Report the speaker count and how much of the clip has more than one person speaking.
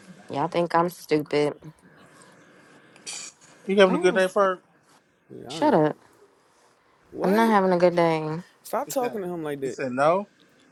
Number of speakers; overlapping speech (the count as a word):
three, about 13%